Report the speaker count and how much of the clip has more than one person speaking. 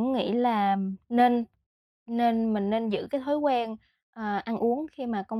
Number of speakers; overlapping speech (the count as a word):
one, no overlap